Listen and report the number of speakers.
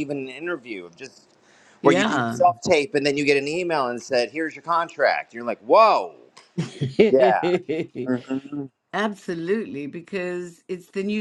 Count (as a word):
two